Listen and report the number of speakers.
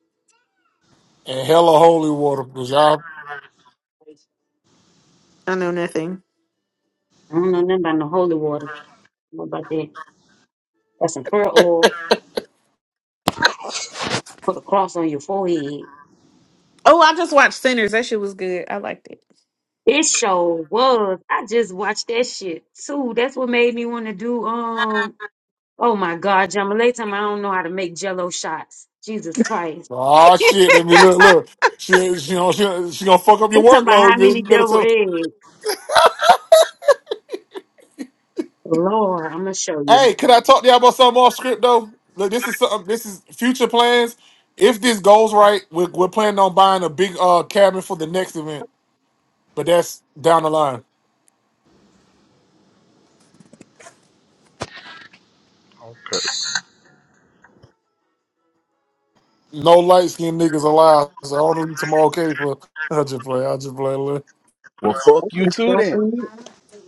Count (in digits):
4